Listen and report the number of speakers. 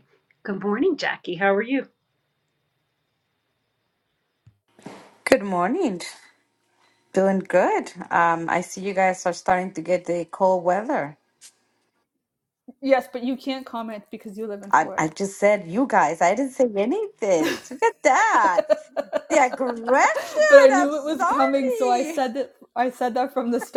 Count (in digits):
3